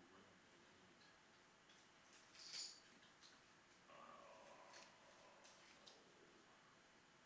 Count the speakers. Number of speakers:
1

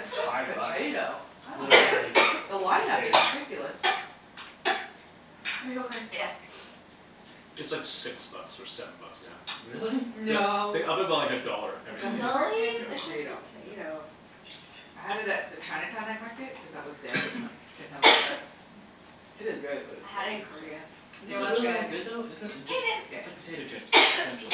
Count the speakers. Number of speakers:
4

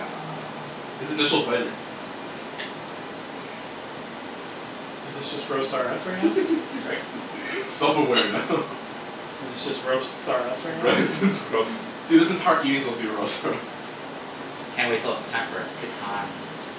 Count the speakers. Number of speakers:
3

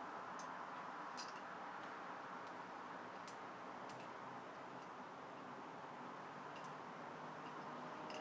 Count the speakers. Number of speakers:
0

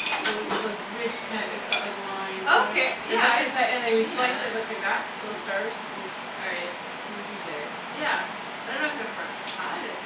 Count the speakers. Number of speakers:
2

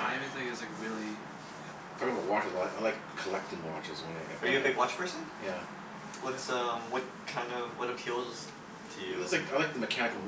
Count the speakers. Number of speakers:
3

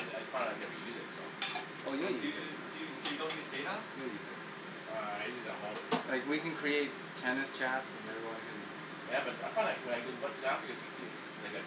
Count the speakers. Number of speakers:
3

